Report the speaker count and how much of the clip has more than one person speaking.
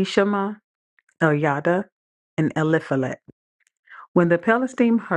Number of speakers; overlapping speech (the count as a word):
one, no overlap